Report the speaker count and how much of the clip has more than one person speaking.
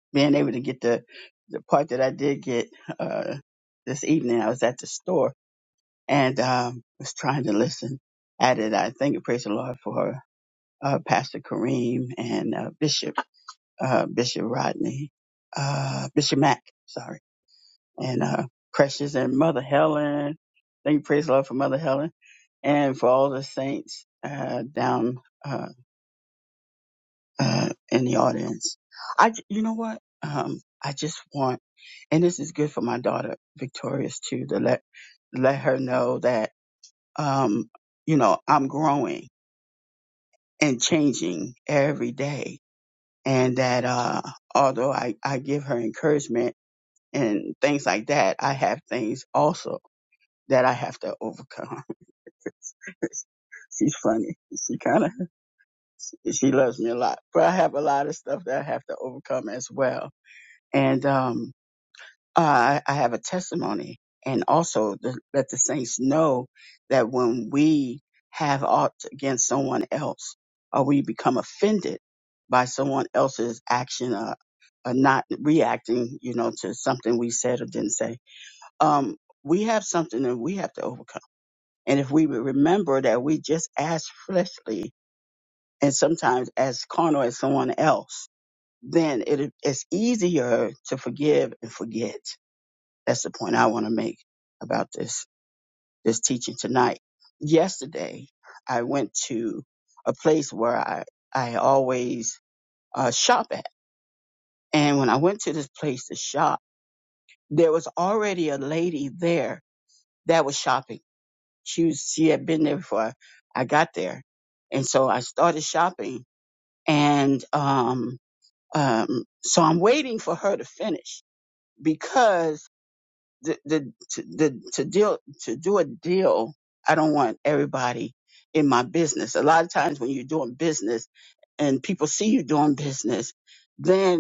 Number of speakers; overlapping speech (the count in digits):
1, no overlap